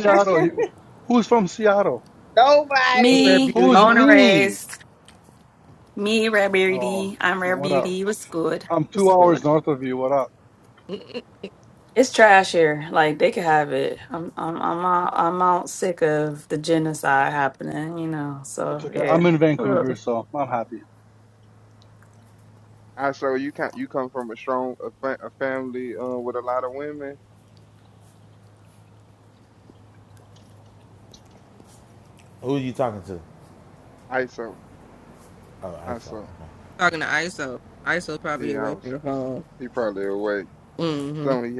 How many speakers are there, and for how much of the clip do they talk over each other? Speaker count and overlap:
6, about 12%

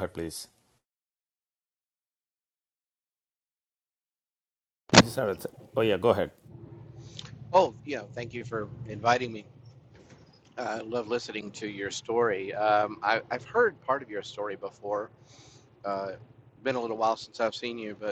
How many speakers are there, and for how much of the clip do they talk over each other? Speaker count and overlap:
2, no overlap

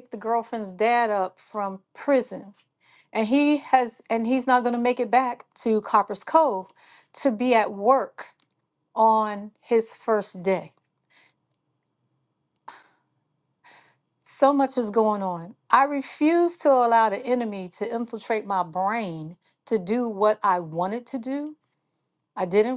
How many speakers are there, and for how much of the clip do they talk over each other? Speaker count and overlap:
1, no overlap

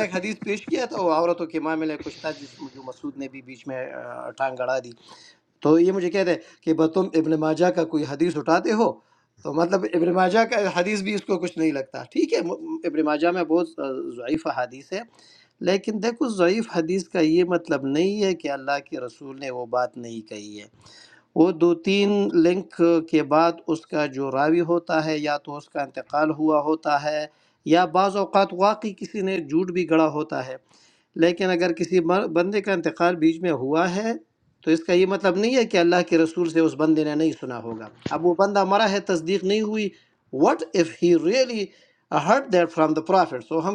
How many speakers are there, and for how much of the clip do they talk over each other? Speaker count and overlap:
1, no overlap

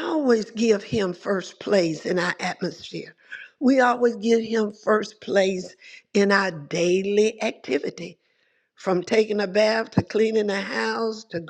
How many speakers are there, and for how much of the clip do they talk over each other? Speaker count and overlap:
1, no overlap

